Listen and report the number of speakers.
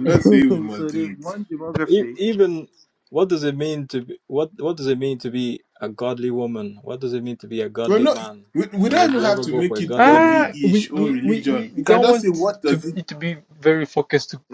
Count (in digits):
4